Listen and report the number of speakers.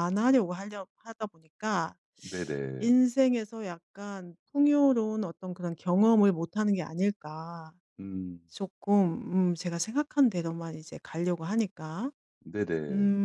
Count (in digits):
2